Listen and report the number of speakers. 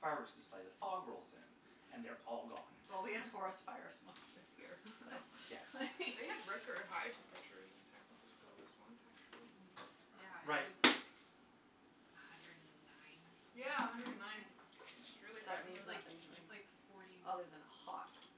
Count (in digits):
4